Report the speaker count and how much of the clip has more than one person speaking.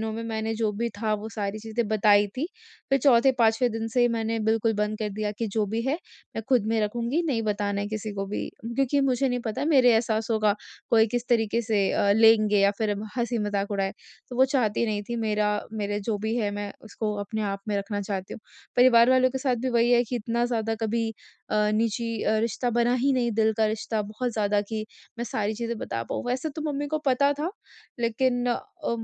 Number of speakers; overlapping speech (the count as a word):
one, no overlap